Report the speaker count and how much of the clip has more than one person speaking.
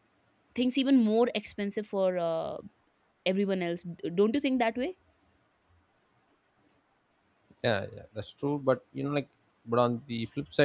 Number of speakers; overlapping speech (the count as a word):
two, no overlap